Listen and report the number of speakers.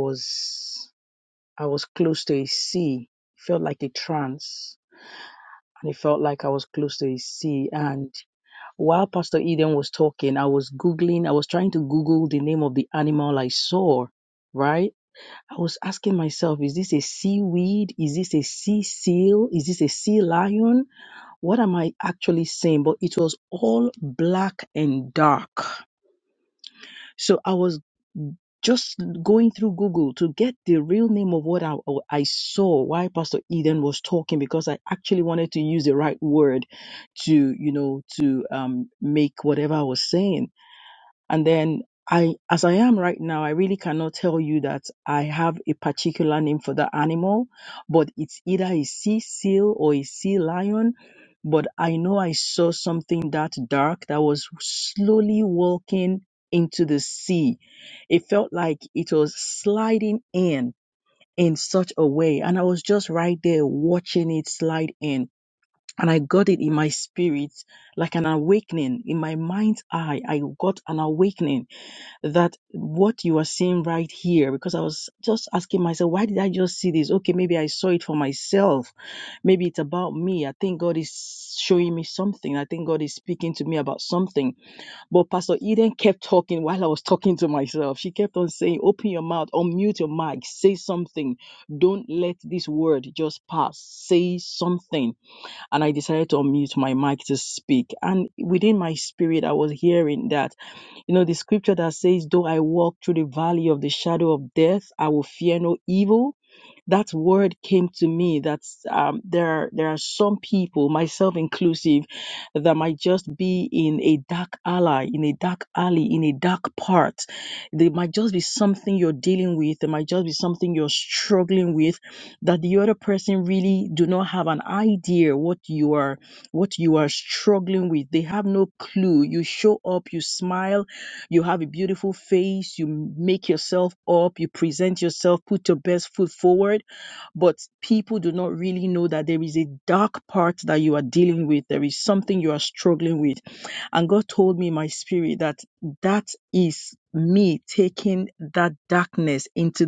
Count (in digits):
1